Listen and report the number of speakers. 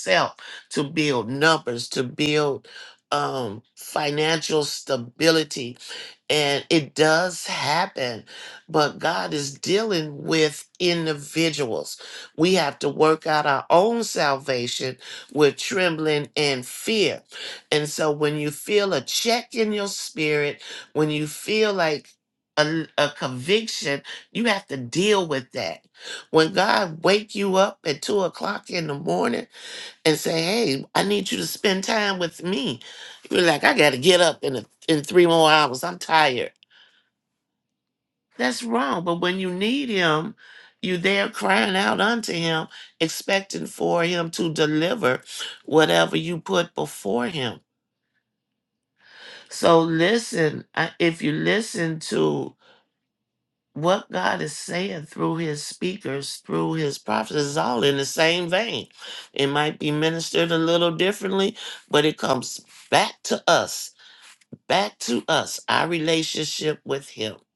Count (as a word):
one